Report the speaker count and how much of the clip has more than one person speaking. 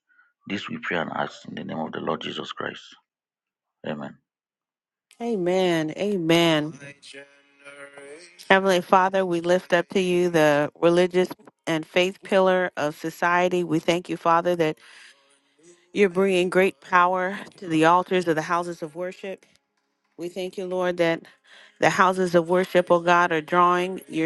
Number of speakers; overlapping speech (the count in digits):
2, no overlap